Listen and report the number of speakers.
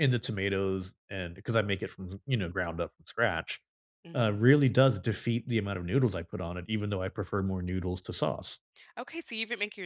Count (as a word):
two